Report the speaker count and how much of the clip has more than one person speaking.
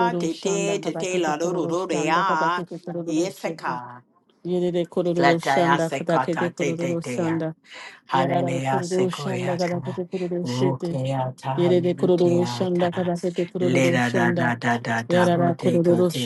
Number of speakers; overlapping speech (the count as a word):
two, about 66%